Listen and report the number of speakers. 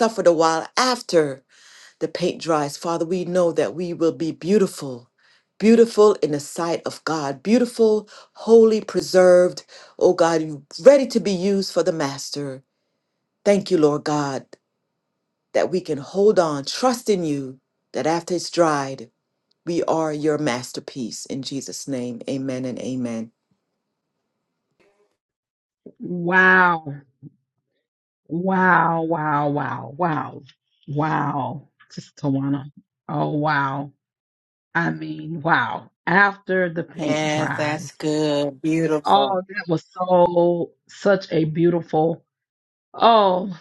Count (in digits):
3